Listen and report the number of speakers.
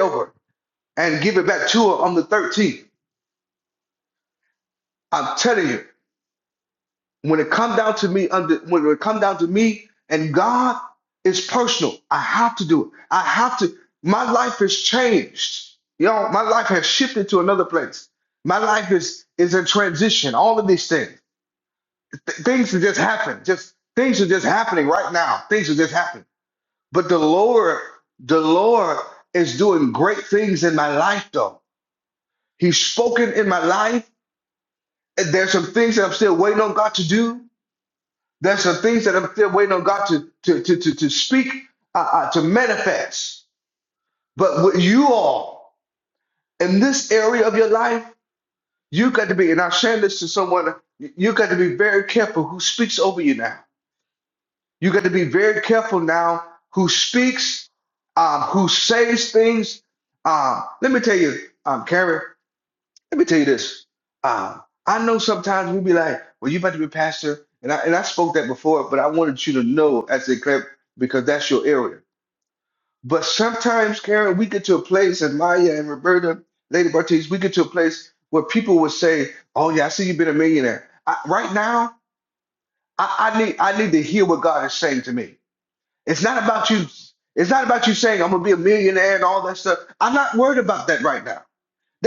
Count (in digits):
1